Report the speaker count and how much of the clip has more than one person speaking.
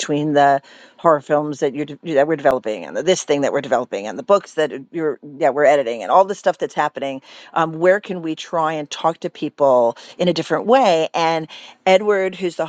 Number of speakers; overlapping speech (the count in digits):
1, no overlap